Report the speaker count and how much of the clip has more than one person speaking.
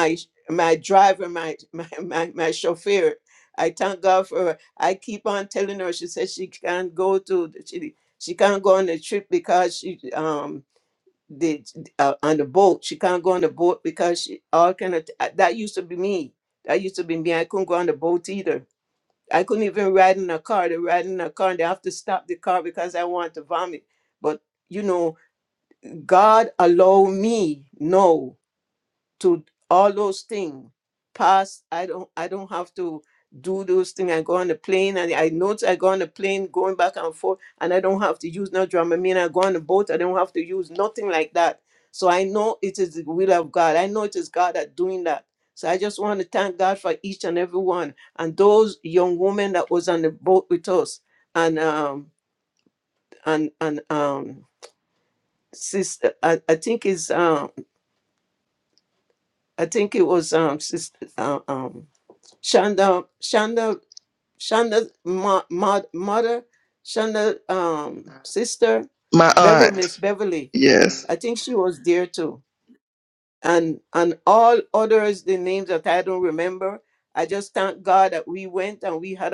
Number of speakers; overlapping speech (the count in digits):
2, about 1%